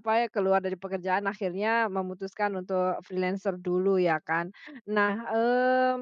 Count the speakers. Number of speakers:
1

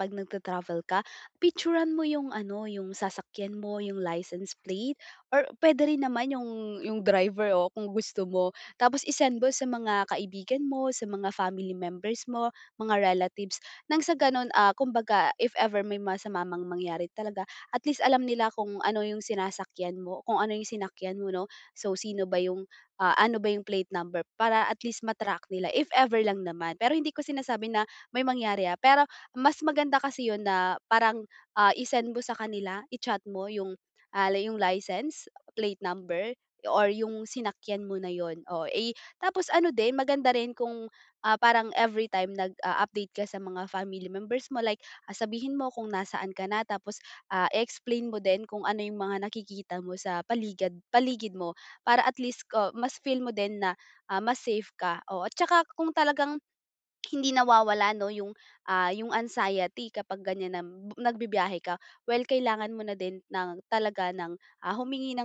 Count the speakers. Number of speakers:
1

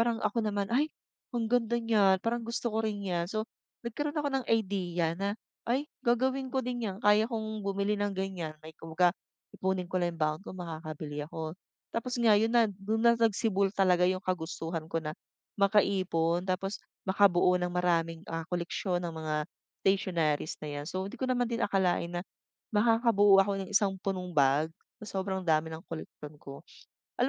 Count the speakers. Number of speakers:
1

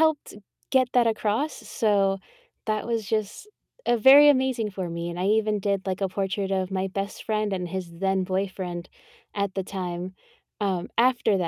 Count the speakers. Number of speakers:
1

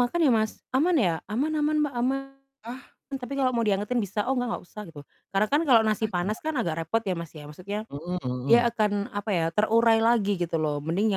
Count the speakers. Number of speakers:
2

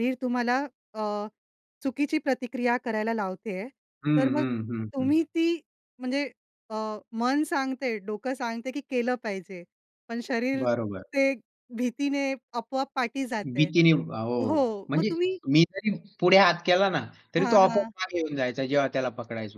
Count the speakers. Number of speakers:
2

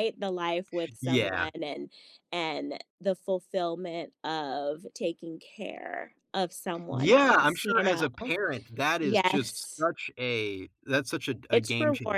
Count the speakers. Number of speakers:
2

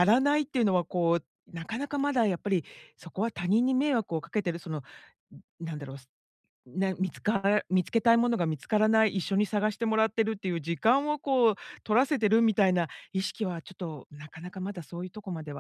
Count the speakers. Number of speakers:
1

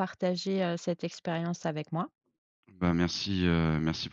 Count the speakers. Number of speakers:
2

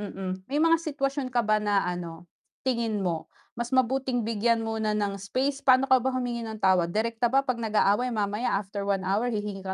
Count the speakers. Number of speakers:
1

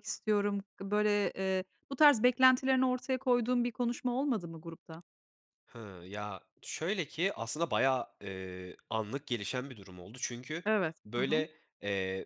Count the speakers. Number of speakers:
2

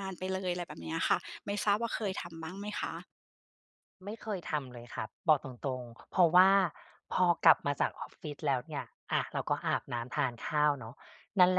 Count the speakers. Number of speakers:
2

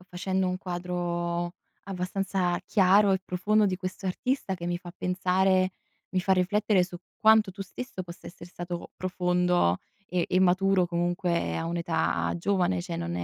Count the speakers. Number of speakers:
1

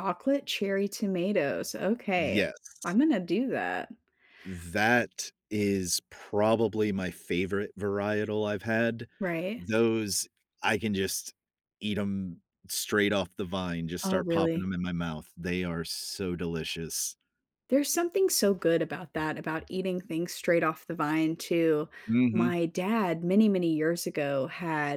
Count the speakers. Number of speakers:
2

